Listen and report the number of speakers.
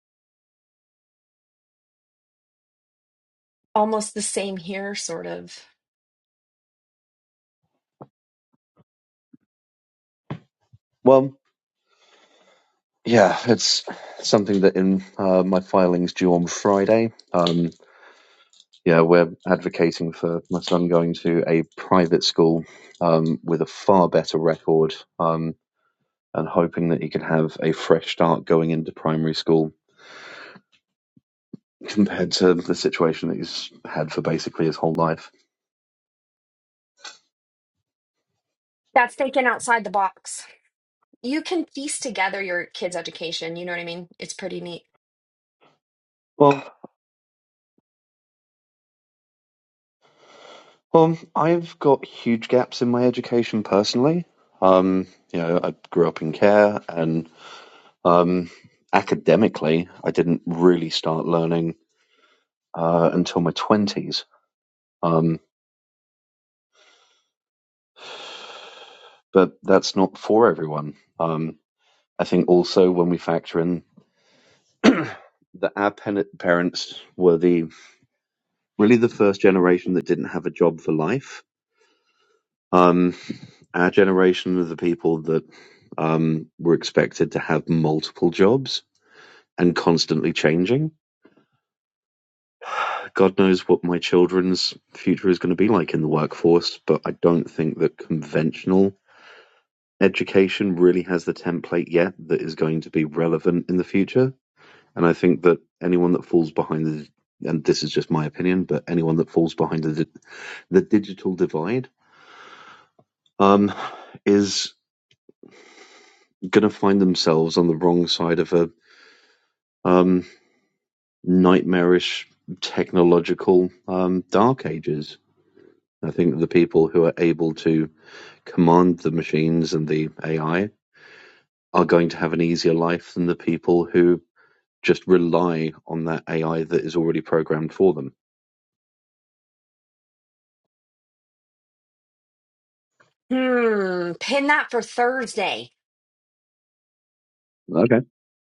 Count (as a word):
two